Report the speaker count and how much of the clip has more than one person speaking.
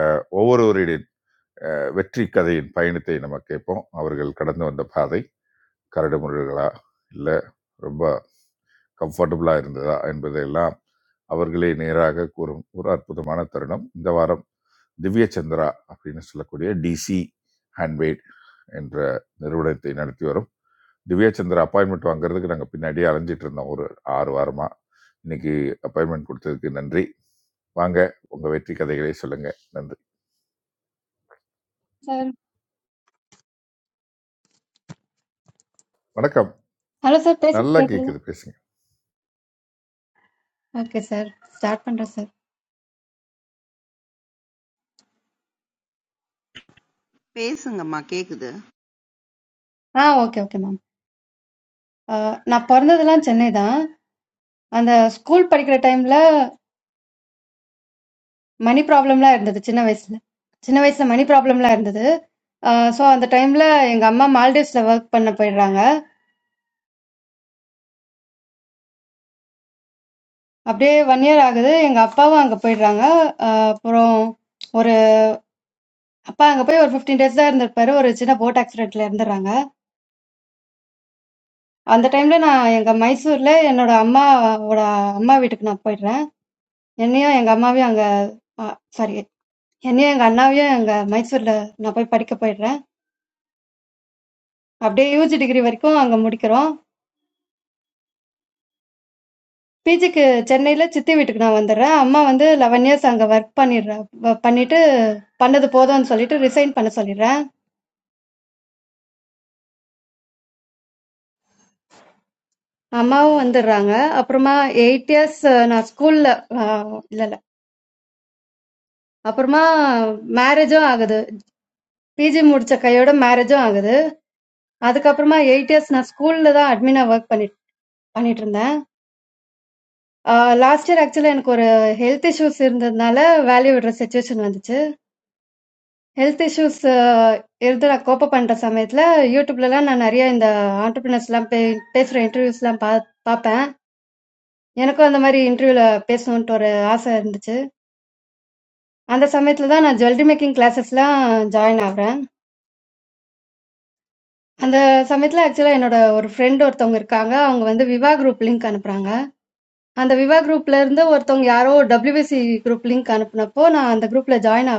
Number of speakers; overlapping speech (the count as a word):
three, under 1%